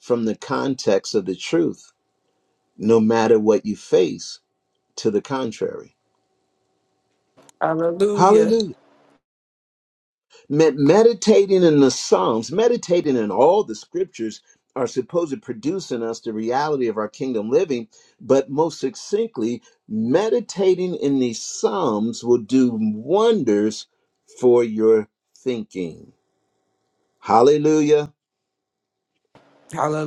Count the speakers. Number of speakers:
2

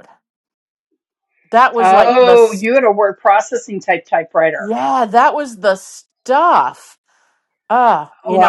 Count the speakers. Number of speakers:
2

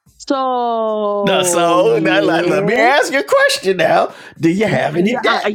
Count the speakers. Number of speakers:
2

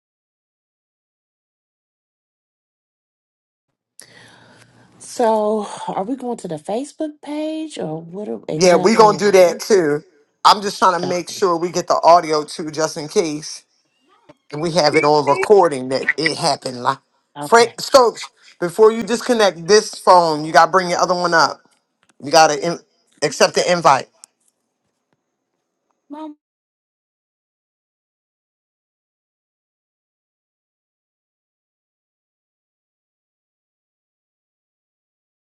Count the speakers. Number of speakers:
2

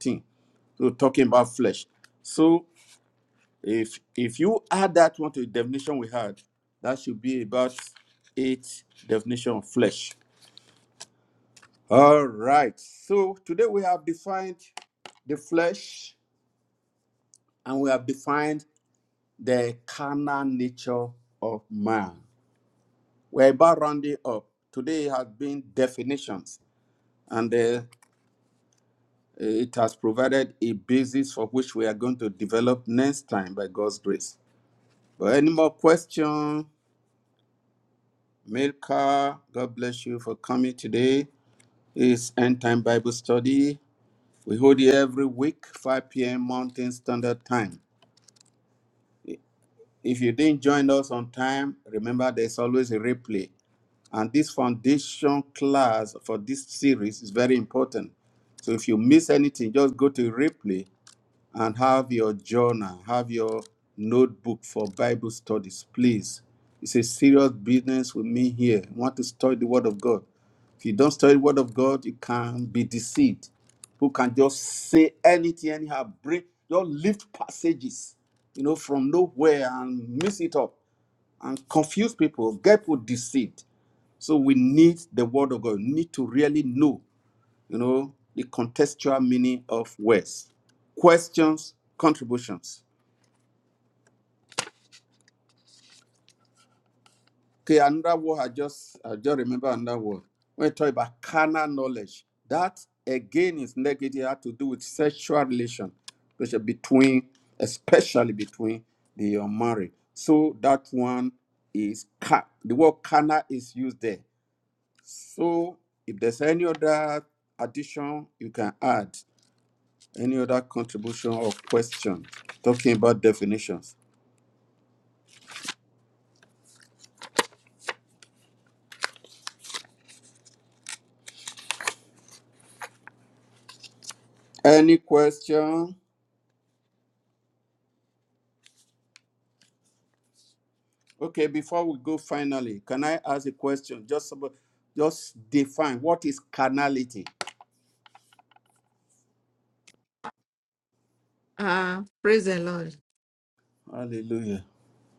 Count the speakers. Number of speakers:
2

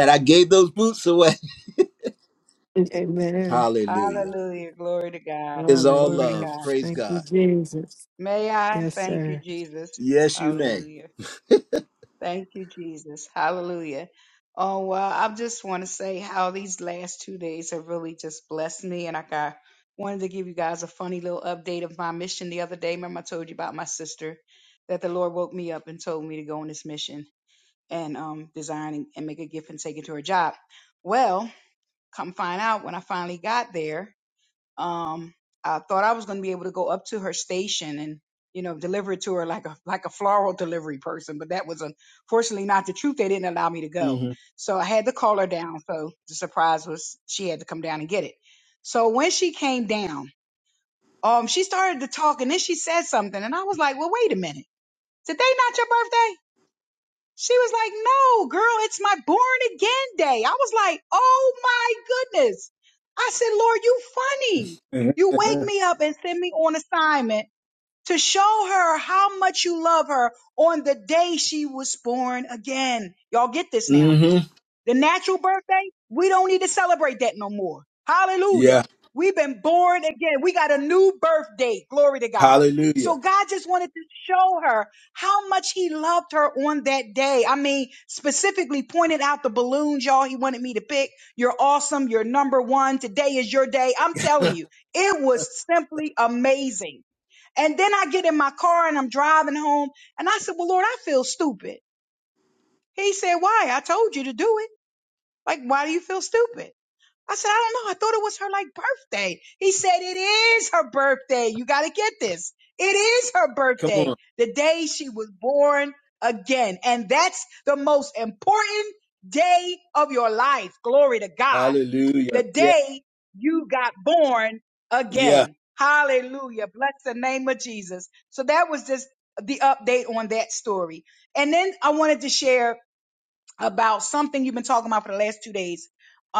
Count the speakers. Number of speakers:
3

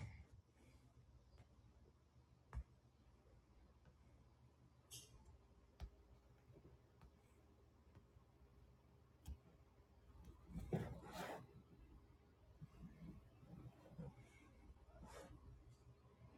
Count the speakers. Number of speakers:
0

